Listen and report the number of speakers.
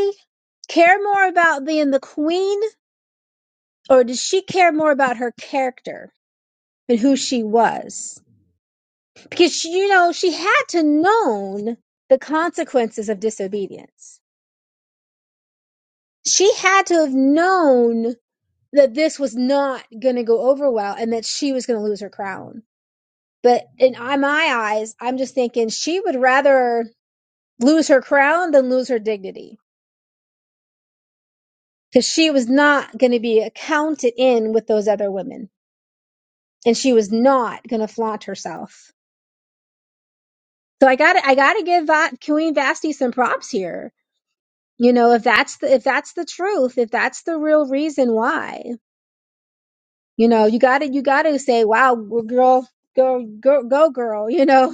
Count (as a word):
one